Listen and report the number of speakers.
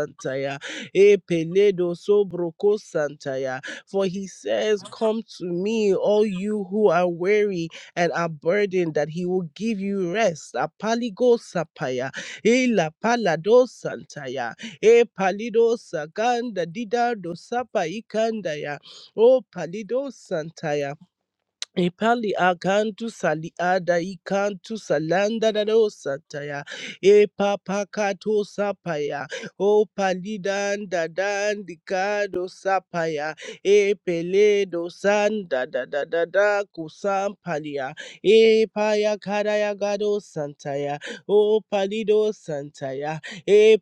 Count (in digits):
1